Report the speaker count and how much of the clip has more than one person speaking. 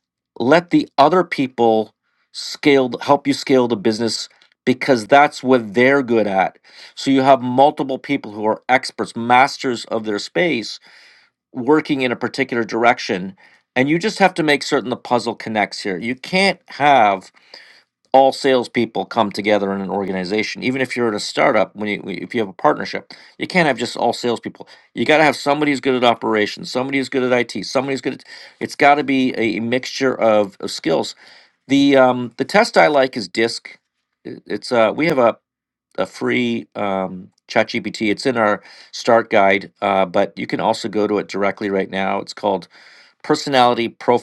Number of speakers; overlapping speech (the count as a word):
one, no overlap